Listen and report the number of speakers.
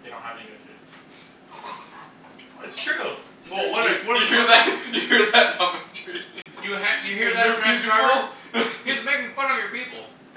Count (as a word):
three